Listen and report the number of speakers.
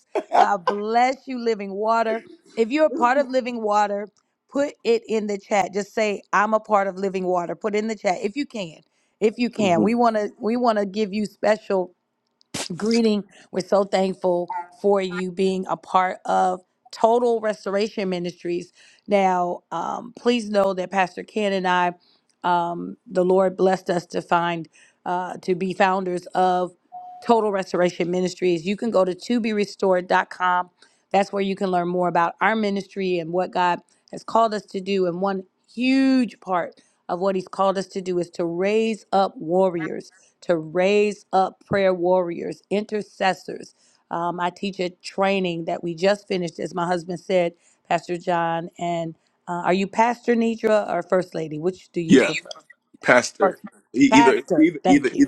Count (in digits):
2